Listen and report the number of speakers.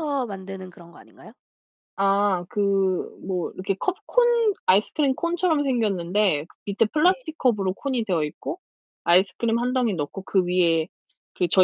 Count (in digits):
2